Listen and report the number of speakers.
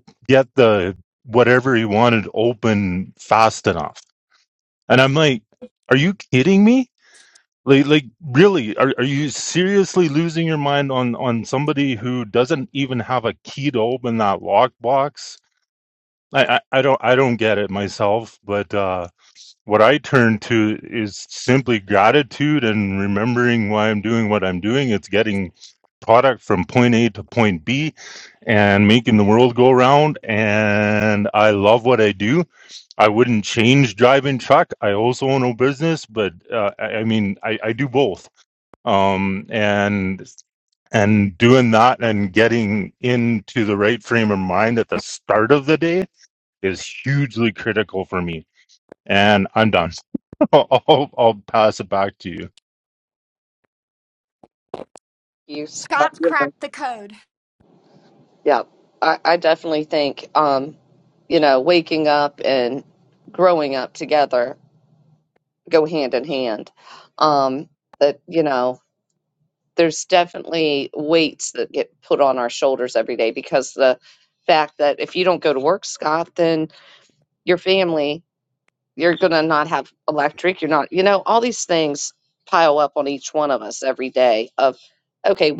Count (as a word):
three